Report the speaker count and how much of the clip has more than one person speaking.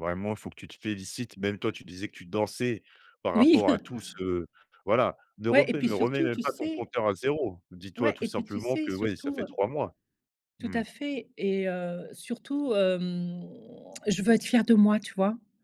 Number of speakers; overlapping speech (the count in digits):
2, about 22%